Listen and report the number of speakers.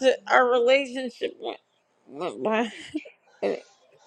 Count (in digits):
1